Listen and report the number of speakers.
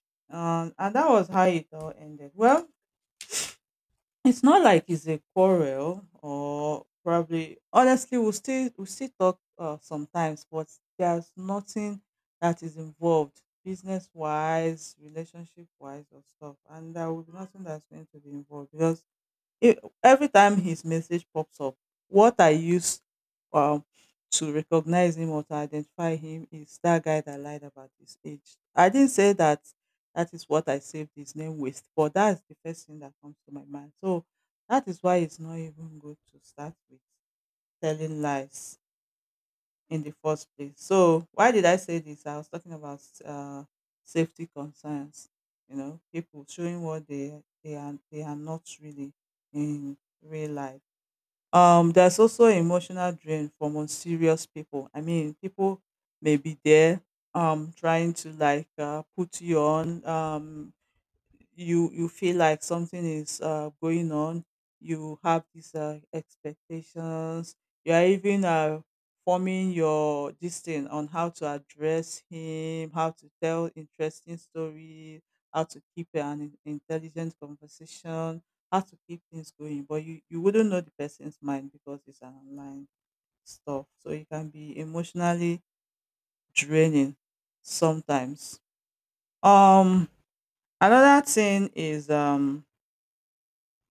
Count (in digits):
1